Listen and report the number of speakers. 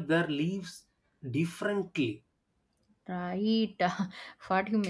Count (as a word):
two